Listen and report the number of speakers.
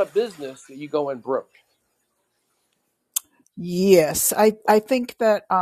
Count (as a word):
two